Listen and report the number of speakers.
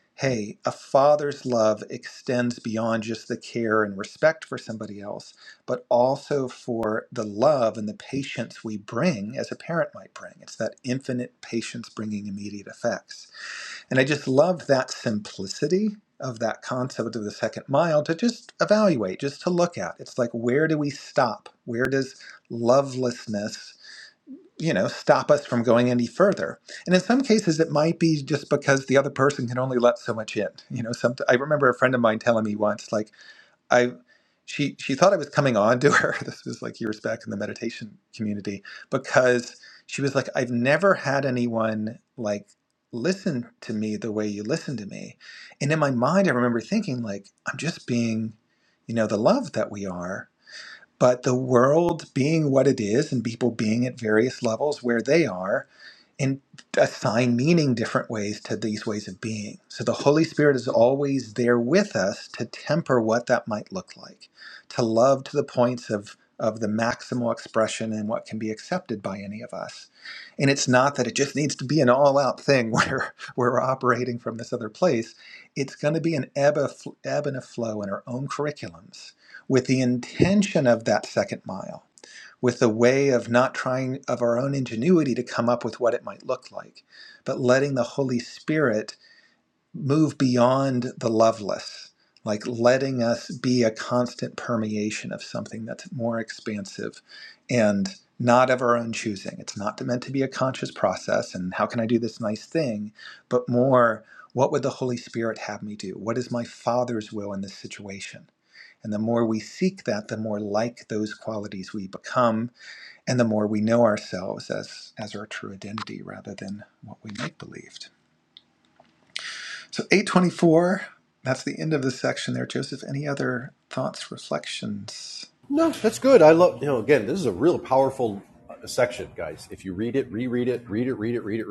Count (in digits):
2